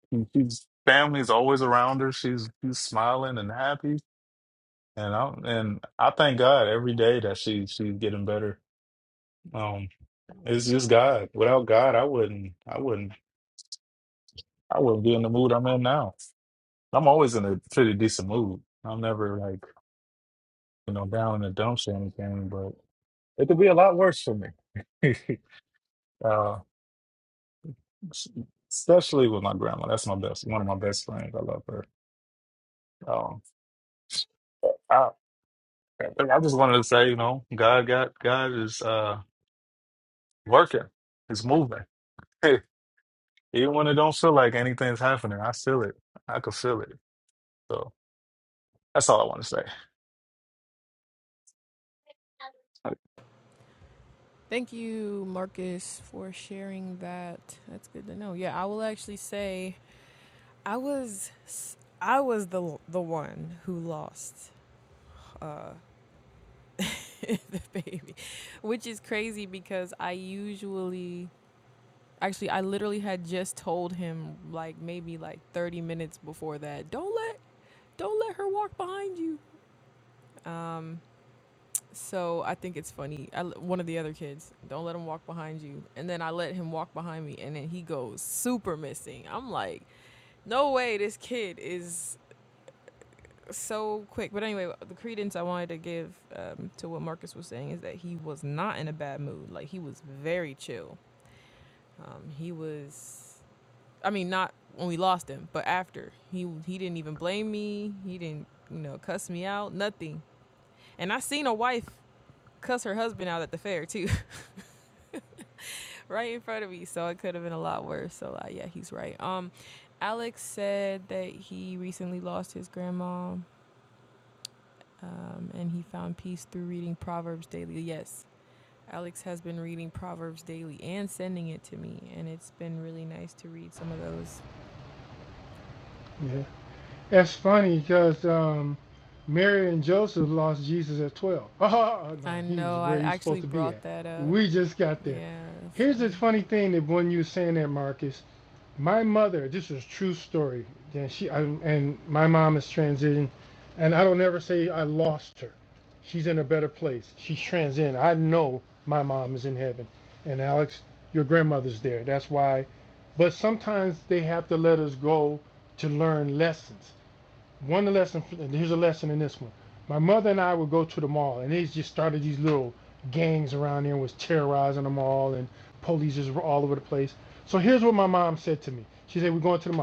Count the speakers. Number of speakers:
three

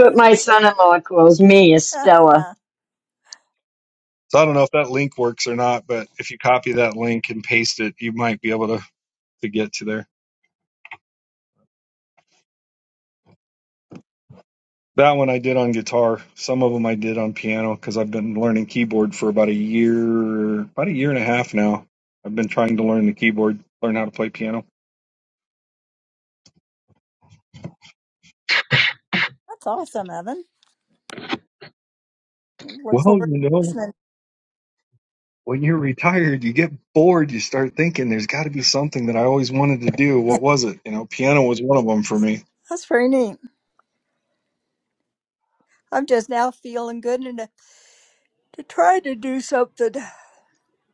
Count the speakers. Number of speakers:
three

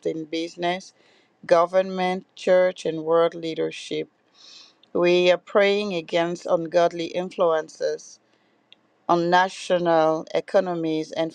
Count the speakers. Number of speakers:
one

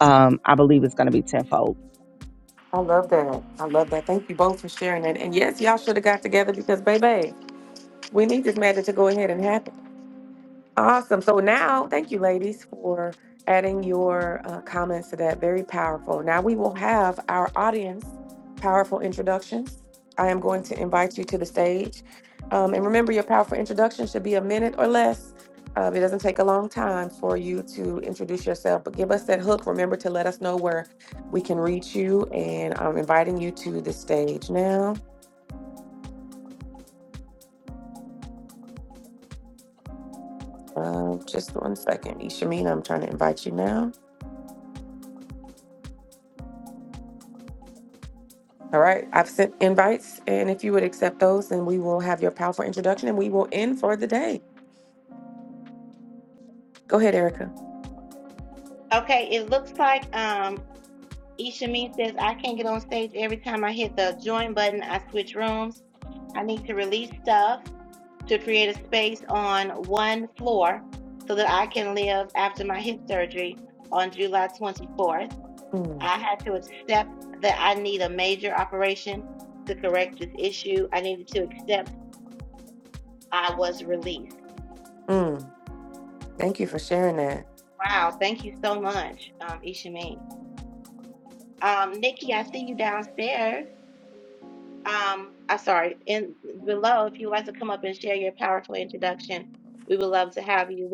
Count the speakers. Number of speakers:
three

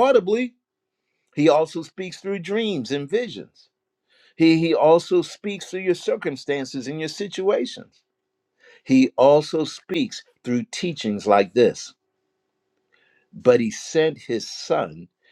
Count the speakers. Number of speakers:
one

